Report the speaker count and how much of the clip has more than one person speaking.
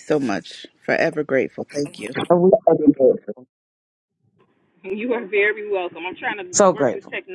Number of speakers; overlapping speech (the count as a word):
three, about 7%